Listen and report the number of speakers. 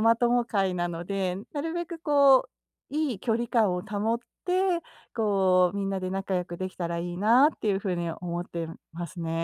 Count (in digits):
1